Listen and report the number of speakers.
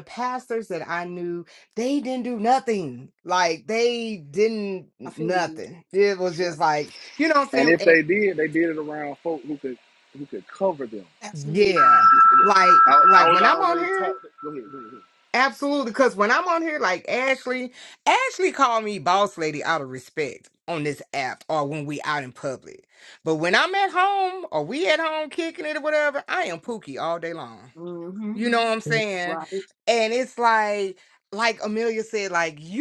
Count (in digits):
3